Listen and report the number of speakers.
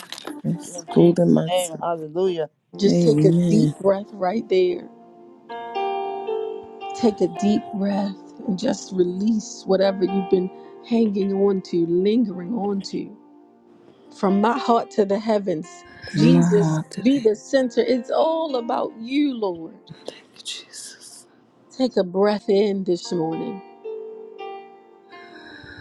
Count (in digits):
3